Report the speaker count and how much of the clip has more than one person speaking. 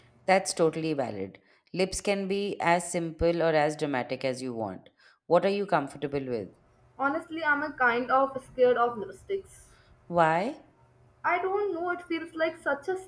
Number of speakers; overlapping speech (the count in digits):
2, no overlap